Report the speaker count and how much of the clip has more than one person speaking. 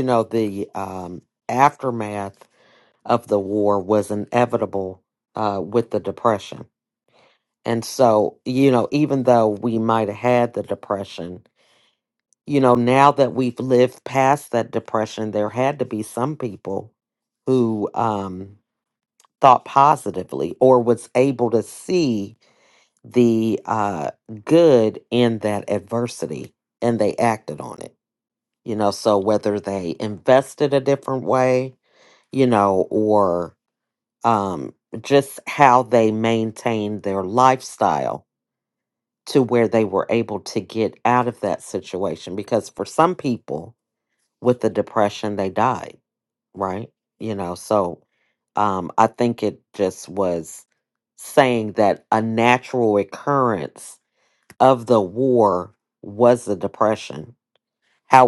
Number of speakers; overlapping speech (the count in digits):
1, no overlap